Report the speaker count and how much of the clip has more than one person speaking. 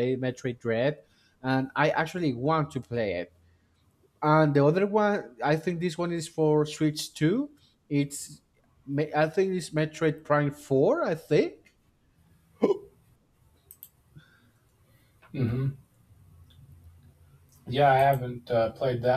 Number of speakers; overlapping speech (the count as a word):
two, no overlap